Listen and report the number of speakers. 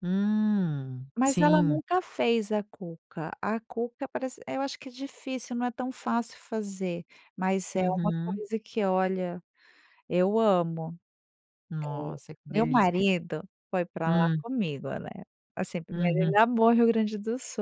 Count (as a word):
two